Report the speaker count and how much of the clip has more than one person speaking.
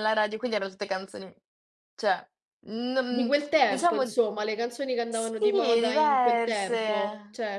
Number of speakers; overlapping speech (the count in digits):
2, about 22%